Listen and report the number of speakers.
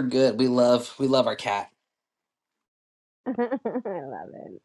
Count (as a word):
two